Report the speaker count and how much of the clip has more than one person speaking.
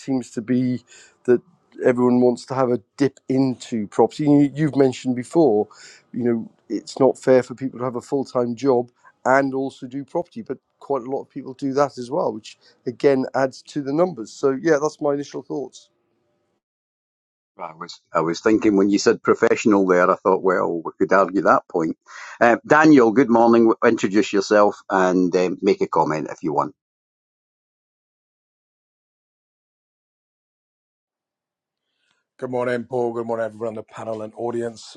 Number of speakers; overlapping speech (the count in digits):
3, no overlap